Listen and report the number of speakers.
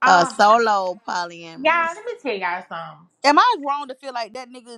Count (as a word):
three